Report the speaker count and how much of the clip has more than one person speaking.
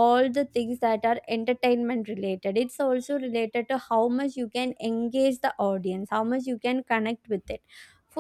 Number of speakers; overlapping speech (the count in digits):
1, no overlap